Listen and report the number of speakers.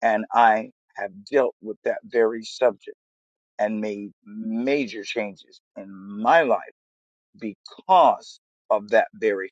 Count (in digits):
1